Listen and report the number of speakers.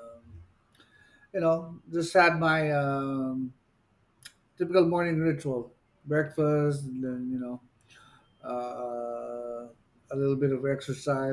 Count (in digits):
1